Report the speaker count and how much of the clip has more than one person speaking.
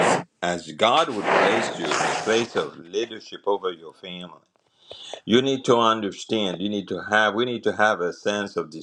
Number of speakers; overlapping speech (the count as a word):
one, no overlap